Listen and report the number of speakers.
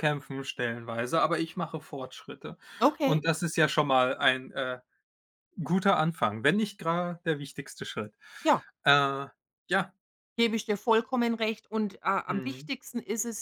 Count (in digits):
2